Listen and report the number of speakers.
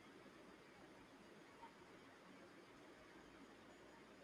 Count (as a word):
zero